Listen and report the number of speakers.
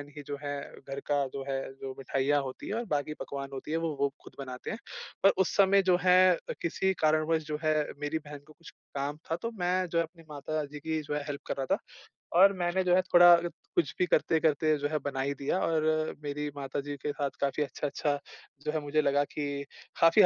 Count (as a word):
one